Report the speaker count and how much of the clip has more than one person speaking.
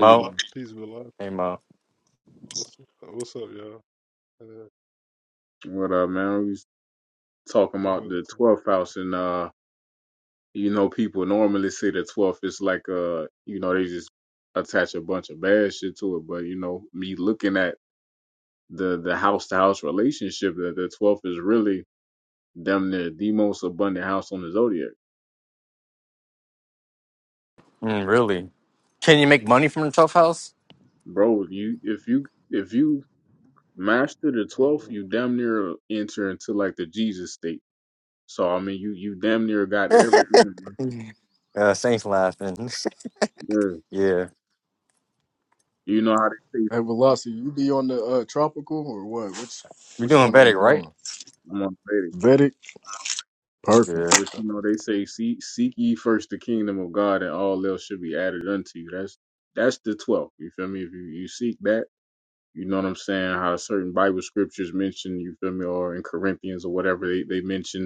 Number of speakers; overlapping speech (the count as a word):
four, about 3%